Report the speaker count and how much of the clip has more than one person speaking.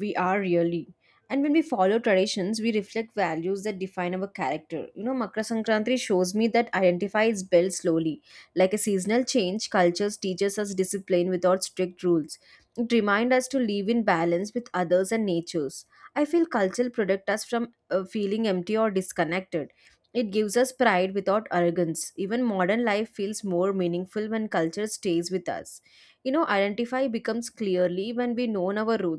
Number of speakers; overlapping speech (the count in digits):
1, no overlap